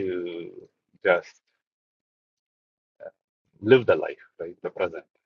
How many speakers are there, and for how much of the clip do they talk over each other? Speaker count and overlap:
one, no overlap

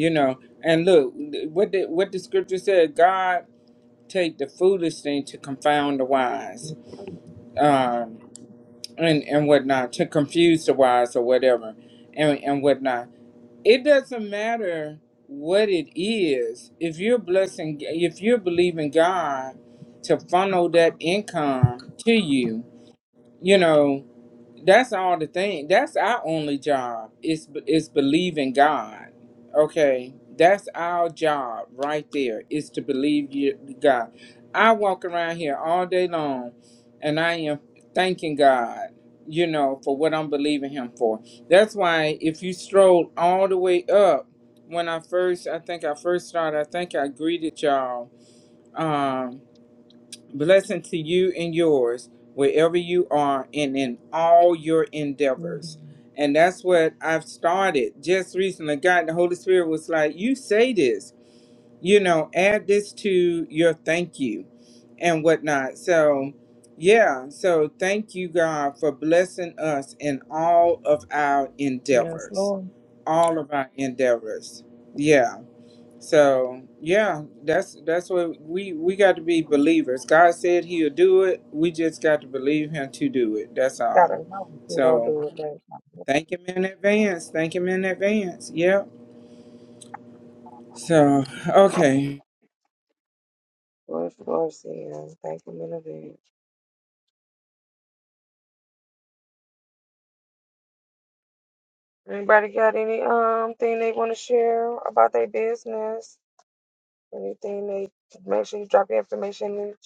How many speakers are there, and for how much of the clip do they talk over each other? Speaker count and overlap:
two, about 1%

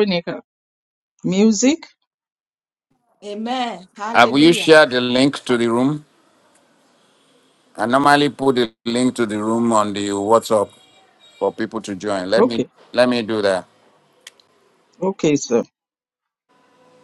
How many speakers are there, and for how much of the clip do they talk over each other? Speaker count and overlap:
three, about 5%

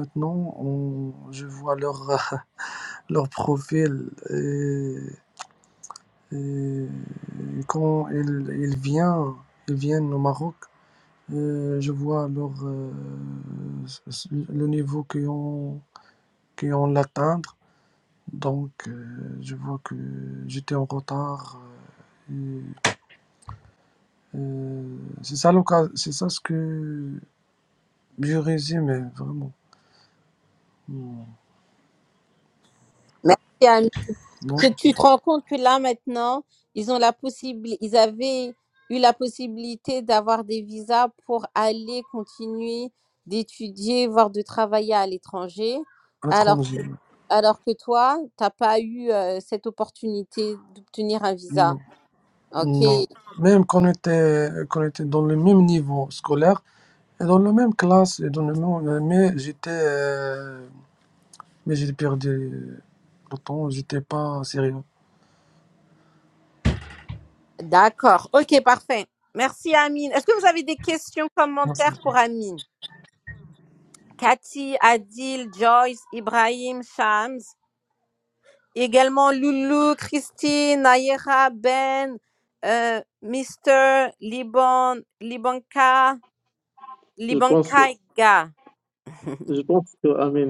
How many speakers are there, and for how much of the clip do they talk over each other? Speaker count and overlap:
three, about 2%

